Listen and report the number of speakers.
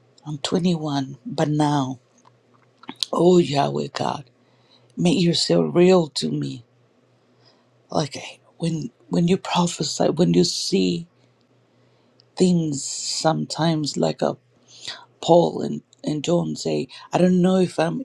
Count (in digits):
1